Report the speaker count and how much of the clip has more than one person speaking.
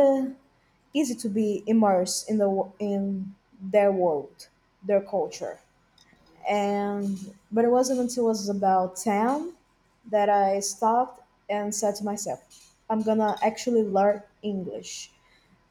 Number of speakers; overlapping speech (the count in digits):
1, no overlap